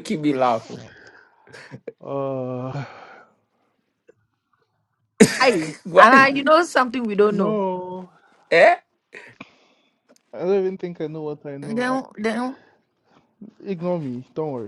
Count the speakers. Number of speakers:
3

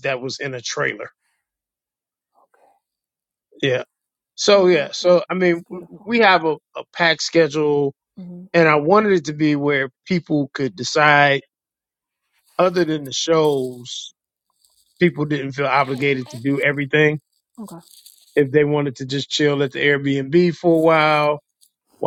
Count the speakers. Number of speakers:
2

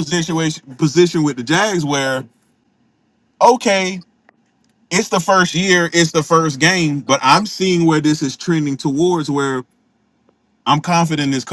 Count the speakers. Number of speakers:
1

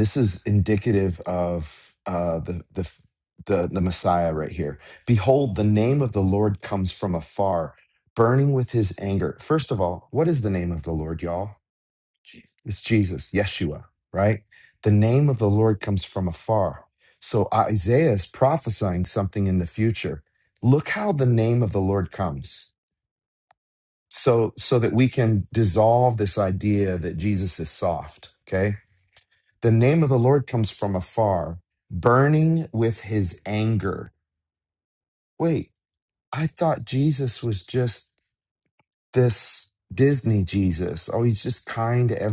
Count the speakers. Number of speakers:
1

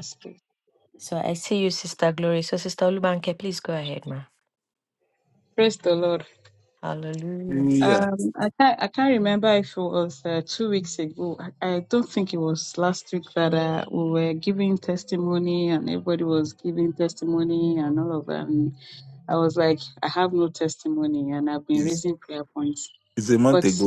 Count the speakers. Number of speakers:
3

